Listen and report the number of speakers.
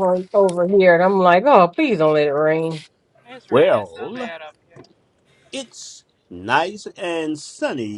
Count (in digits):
3